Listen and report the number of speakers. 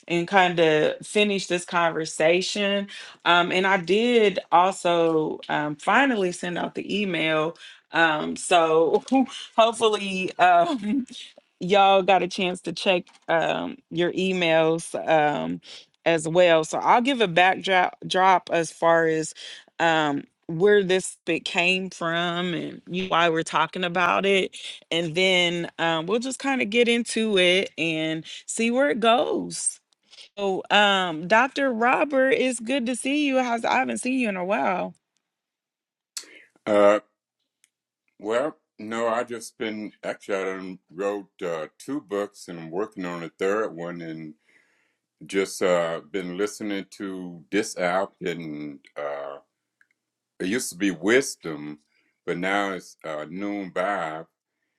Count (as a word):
two